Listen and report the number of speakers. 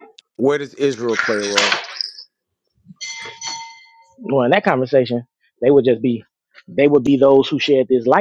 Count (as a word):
two